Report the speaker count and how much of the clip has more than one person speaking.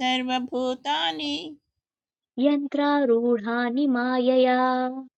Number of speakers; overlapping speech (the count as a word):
two, no overlap